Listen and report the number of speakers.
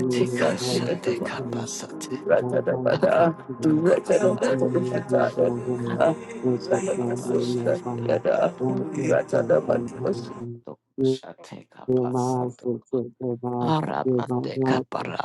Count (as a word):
three